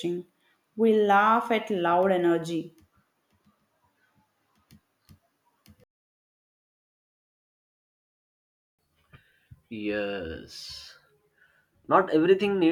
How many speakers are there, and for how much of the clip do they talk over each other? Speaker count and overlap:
two, no overlap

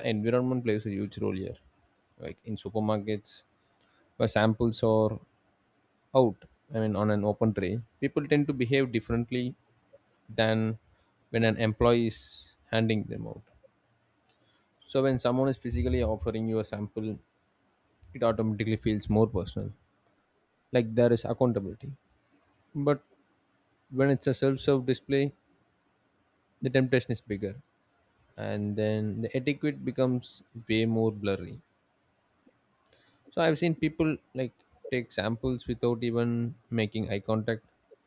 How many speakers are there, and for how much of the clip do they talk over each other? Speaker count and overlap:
one, no overlap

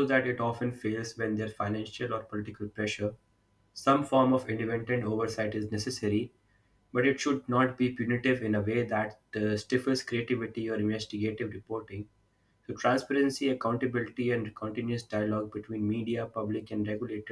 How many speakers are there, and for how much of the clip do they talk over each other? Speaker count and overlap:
one, no overlap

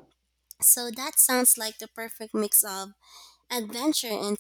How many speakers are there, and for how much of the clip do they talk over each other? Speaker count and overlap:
one, no overlap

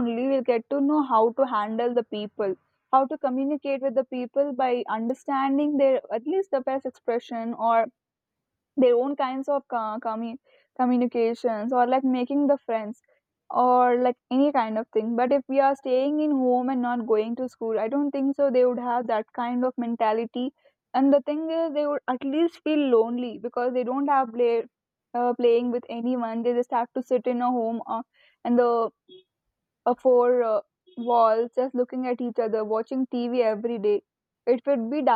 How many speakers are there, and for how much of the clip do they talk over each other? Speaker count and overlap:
one, no overlap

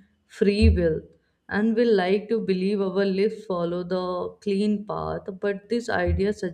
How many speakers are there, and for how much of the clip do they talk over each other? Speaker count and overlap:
one, no overlap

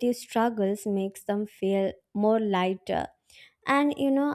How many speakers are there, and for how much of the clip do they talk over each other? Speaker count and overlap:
one, no overlap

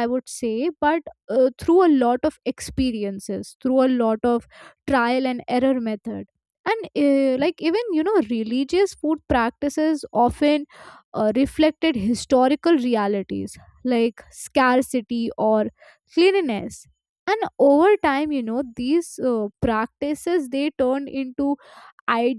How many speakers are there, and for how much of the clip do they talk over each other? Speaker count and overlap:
one, no overlap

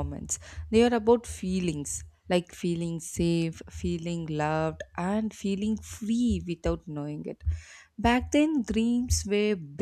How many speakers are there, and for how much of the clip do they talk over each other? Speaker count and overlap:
one, no overlap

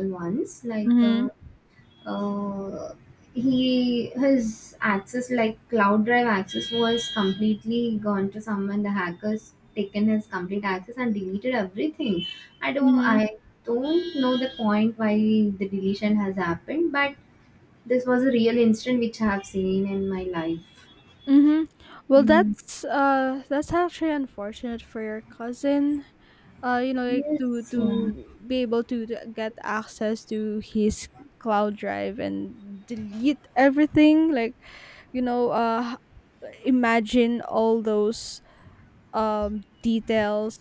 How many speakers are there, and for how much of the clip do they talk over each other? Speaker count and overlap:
two, about 6%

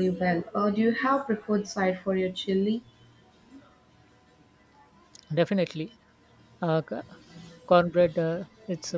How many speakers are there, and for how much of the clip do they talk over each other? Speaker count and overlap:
two, no overlap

